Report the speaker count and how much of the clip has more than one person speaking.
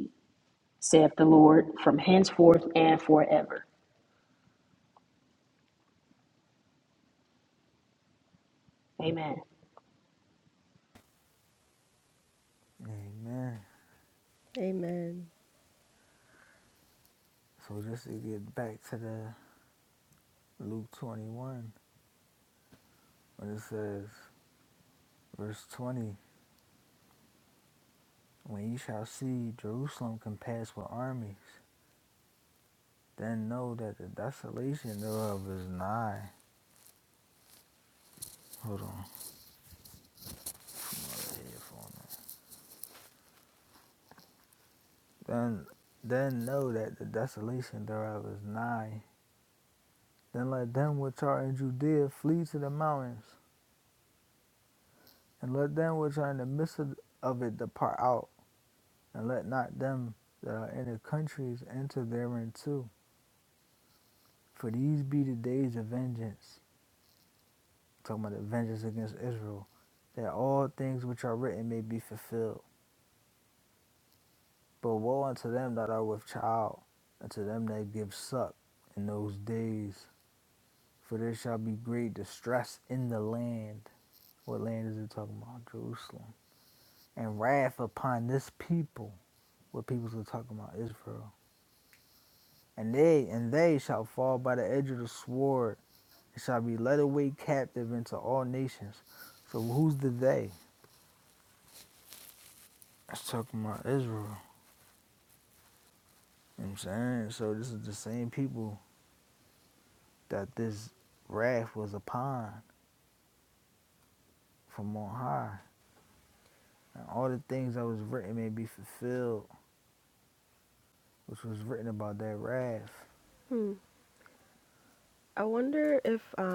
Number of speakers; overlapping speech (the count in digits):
3, no overlap